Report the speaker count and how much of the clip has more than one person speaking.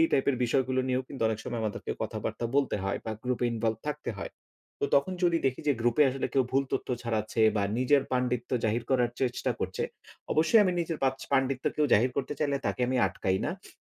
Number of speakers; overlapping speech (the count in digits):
1, no overlap